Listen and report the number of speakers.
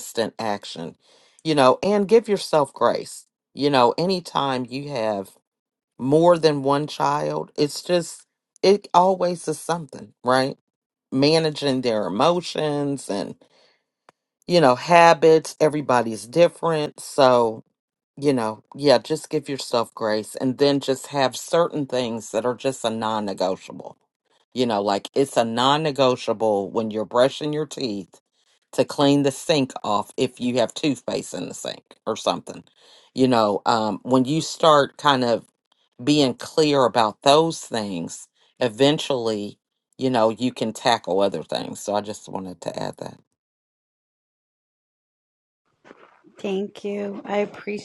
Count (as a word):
two